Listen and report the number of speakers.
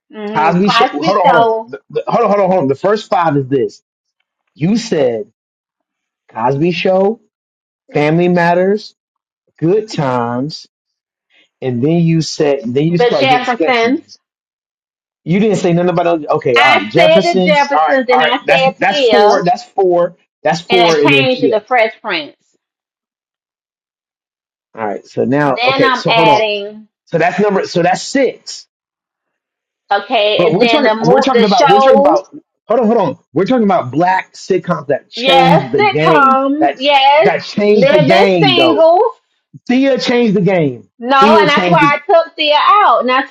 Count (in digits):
2